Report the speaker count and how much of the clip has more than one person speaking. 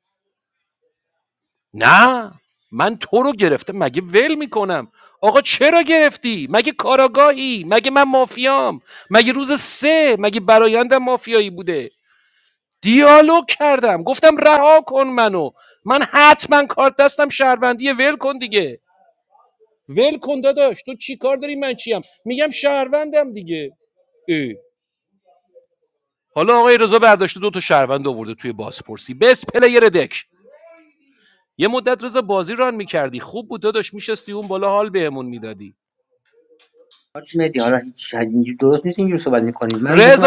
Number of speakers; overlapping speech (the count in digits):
2, about 1%